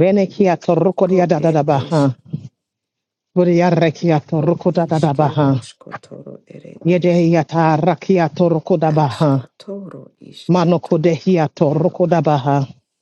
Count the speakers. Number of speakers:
2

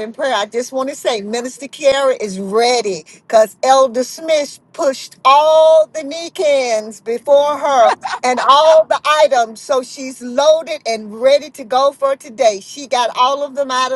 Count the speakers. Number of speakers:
1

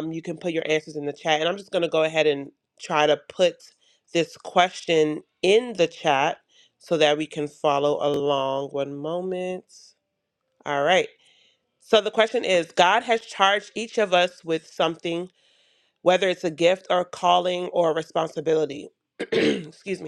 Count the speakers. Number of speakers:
1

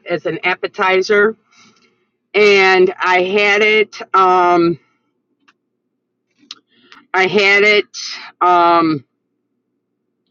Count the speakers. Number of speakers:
1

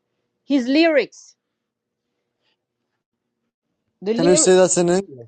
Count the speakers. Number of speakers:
2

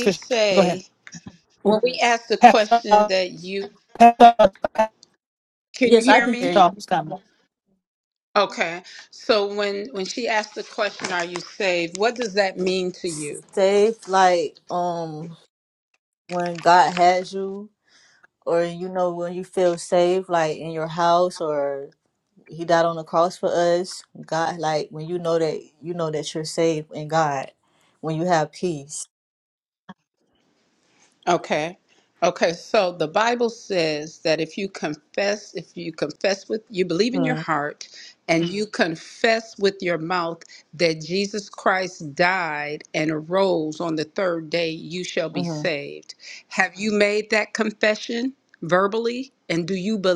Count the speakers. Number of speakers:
3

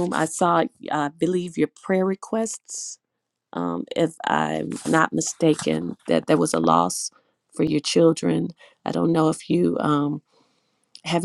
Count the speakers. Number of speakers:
1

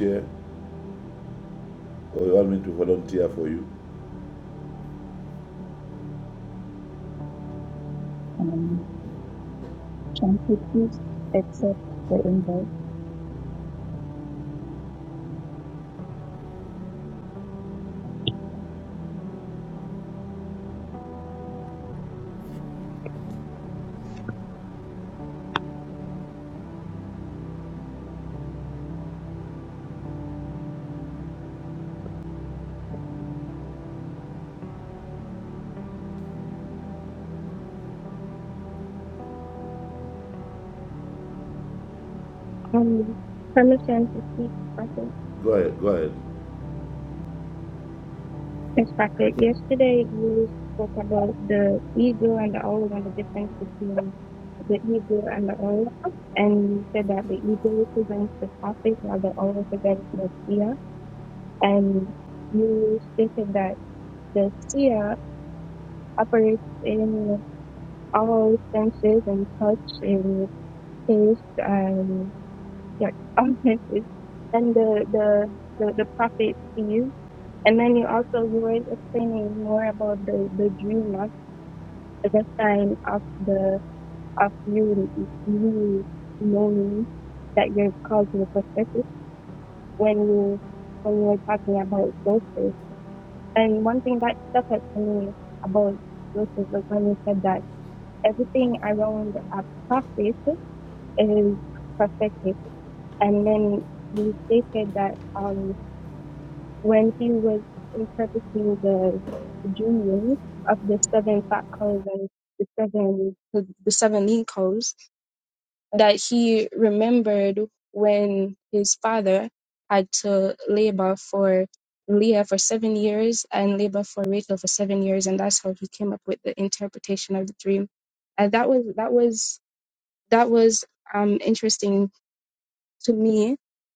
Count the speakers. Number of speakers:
3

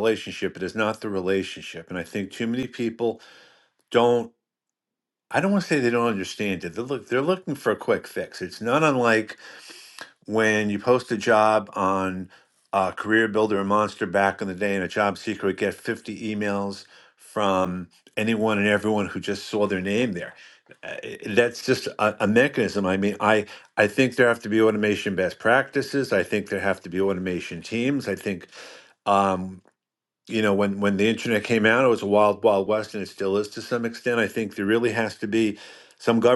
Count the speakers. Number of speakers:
1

